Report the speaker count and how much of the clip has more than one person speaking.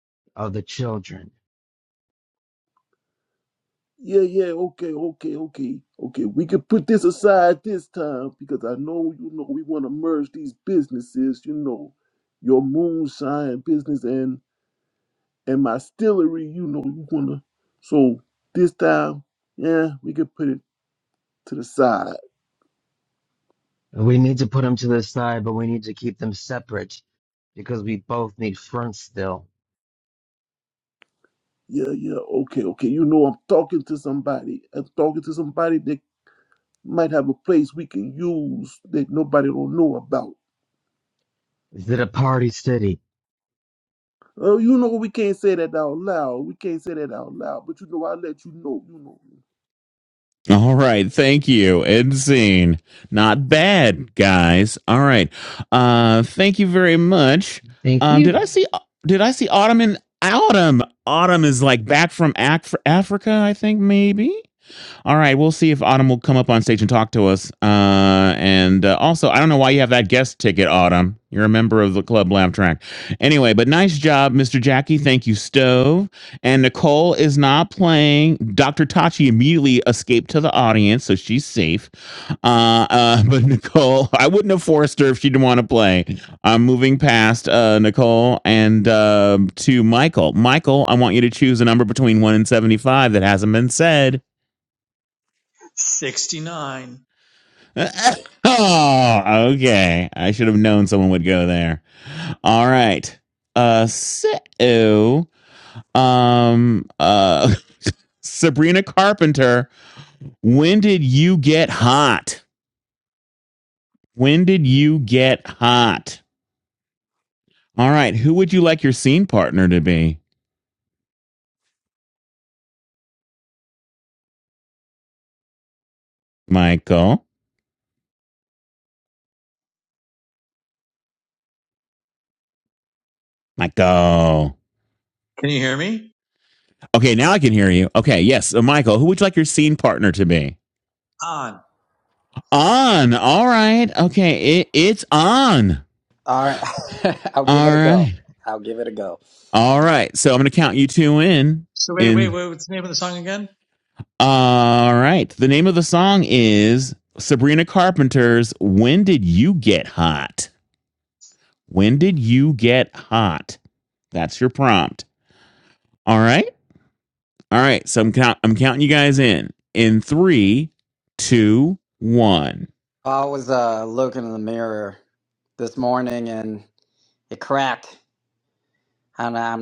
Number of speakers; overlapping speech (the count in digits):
5, about 1%